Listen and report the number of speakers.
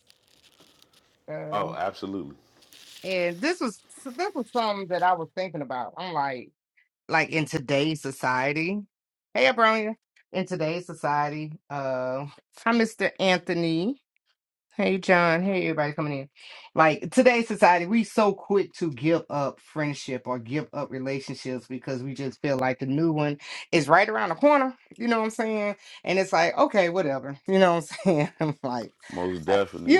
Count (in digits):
2